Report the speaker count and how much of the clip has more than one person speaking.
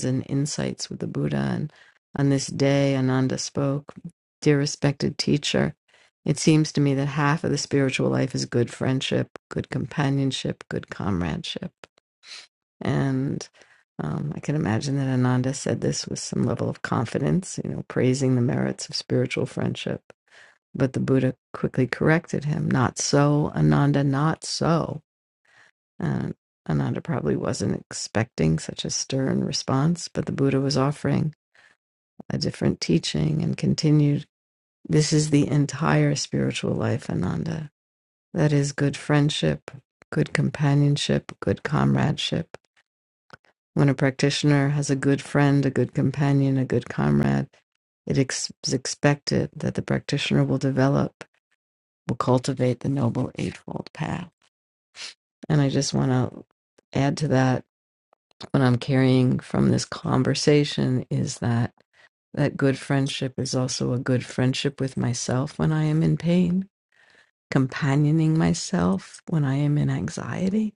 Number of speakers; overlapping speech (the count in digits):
1, no overlap